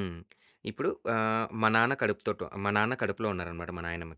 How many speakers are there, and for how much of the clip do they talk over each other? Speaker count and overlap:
1, no overlap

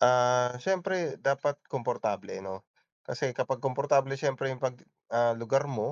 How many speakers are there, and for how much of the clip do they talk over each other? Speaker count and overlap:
1, no overlap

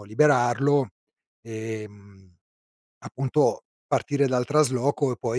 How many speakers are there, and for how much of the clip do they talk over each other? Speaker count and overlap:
1, no overlap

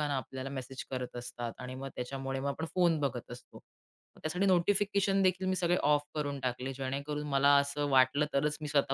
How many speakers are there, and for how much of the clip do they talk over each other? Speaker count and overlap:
1, no overlap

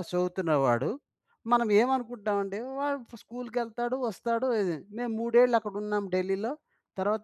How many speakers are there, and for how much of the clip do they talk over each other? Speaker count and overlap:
1, no overlap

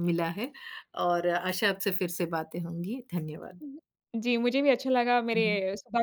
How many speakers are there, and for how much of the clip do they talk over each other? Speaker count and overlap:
2, about 3%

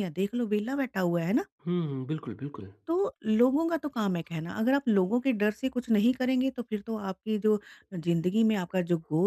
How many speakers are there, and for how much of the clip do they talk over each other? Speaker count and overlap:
2, no overlap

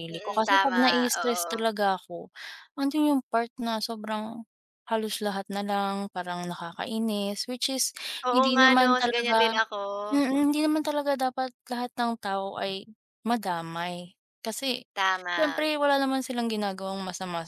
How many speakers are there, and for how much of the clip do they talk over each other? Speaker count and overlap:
2, about 18%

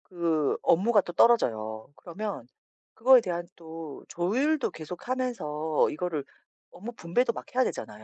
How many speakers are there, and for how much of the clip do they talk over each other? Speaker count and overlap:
1, no overlap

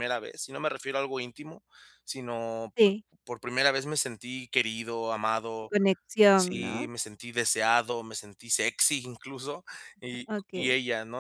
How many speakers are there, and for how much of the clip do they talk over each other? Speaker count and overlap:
2, about 9%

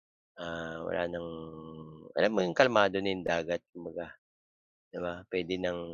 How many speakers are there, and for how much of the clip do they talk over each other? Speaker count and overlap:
1, no overlap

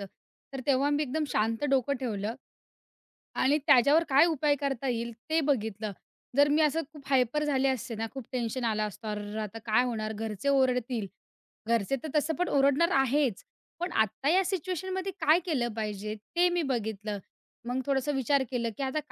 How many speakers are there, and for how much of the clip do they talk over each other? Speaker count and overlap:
1, no overlap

